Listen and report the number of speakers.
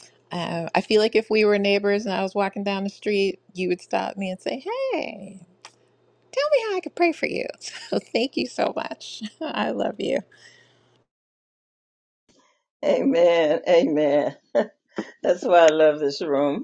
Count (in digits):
2